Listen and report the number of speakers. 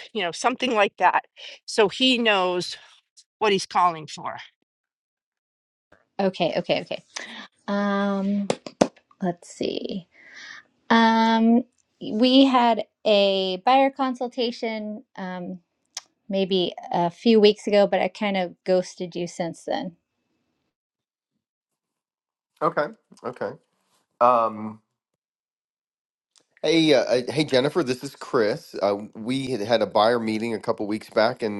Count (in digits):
3